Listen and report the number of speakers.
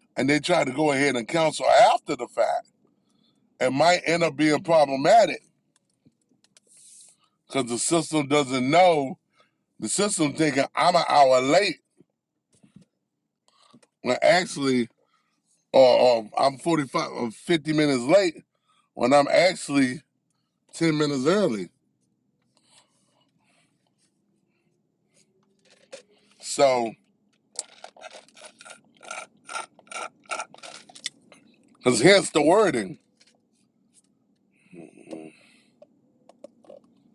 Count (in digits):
1